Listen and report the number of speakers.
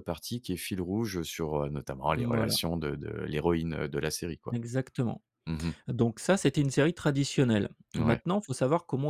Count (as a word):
two